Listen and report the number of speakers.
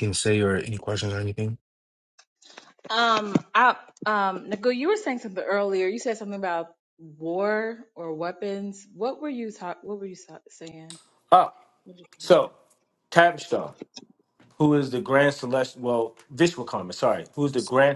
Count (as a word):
three